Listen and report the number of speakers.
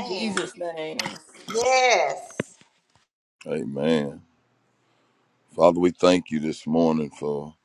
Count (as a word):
three